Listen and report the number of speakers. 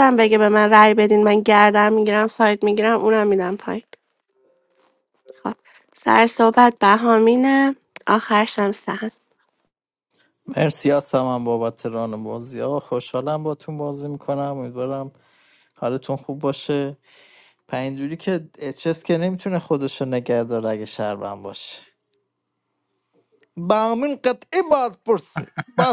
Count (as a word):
two